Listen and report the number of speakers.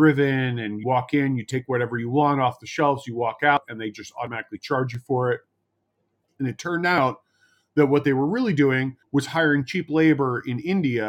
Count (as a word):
one